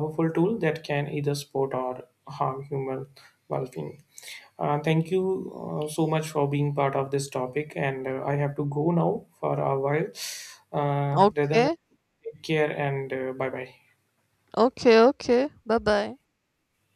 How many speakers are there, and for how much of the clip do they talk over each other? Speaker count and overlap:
2, about 3%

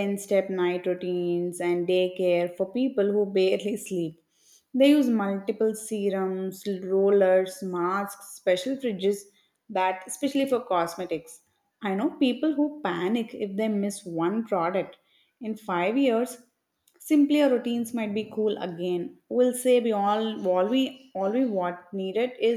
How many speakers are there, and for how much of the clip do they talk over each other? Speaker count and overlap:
1, no overlap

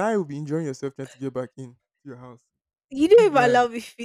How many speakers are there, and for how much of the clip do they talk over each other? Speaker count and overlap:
2, about 11%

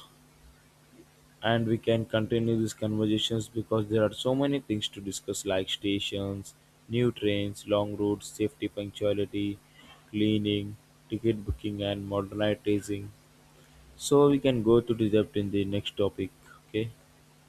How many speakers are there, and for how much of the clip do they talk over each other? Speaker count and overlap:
1, no overlap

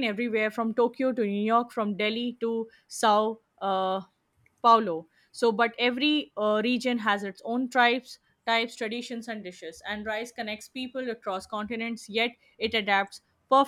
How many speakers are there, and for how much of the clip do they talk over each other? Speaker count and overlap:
1, no overlap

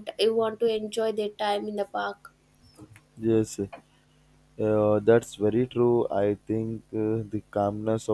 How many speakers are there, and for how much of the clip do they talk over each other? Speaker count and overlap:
2, no overlap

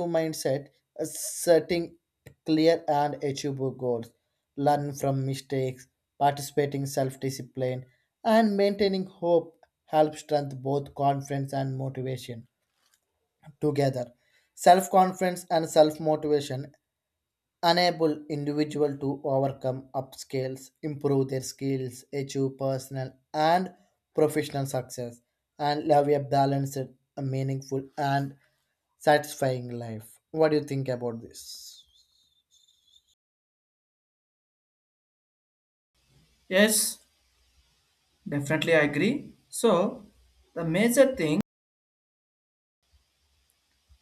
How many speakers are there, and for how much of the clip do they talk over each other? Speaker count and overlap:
2, no overlap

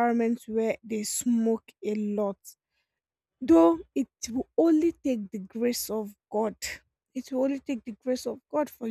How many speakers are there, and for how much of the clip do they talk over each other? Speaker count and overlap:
1, no overlap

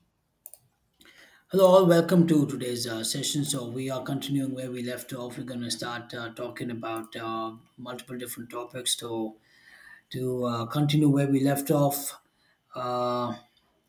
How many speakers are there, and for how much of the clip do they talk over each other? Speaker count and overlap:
1, no overlap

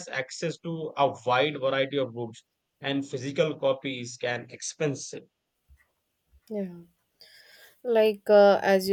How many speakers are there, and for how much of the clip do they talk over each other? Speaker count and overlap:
2, no overlap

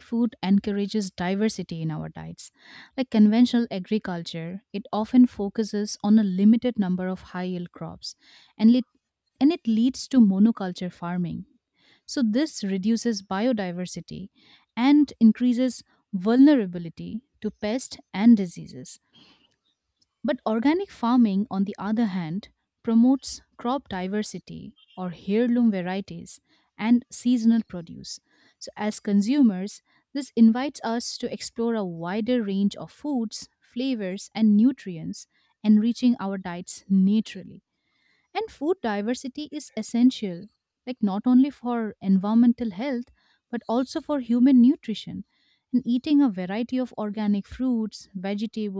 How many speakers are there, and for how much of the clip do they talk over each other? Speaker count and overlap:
1, no overlap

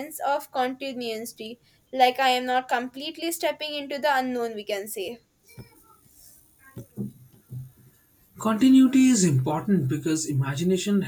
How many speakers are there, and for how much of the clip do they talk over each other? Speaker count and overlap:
2, no overlap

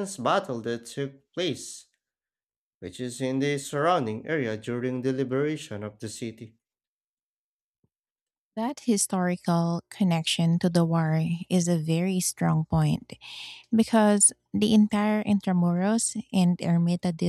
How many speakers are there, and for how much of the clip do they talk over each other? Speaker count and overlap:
2, no overlap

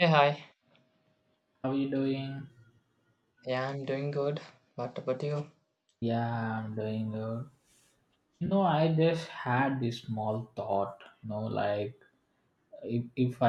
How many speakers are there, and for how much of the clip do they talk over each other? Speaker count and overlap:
2, no overlap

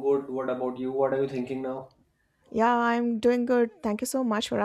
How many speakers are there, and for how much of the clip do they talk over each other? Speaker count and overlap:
2, no overlap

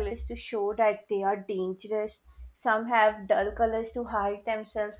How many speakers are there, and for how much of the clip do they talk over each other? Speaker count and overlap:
1, no overlap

